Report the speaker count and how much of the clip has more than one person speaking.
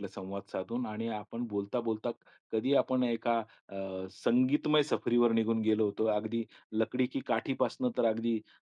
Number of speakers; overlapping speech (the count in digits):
1, no overlap